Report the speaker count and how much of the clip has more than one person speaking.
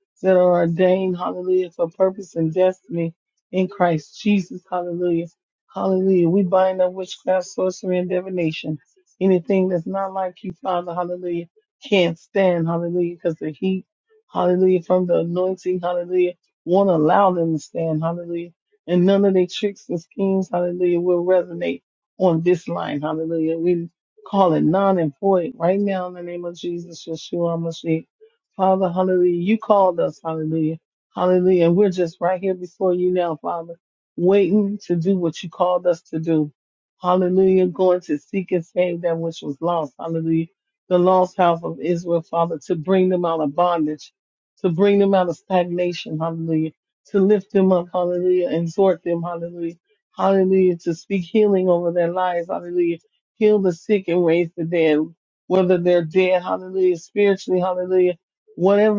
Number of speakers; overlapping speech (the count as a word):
one, no overlap